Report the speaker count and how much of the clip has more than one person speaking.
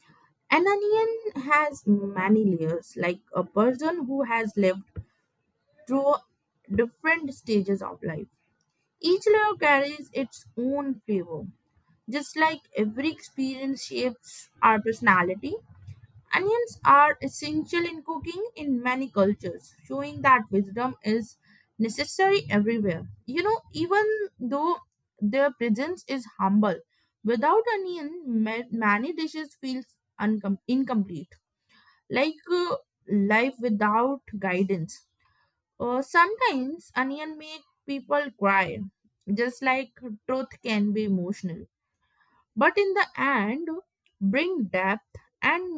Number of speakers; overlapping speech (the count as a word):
one, no overlap